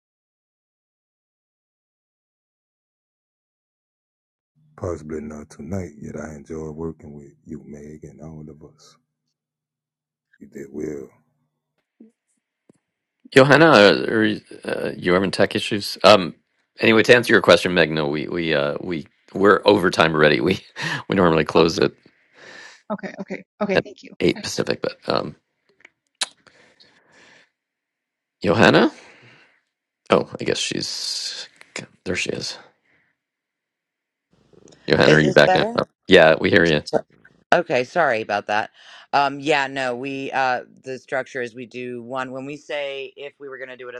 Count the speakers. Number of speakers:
four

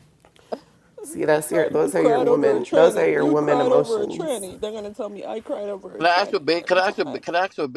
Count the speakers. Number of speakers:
three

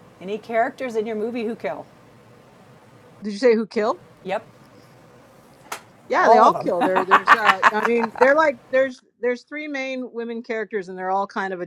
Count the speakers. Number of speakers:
two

